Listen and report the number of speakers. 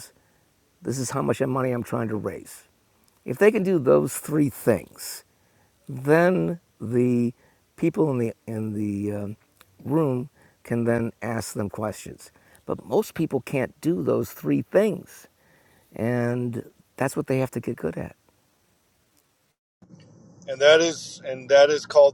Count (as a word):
two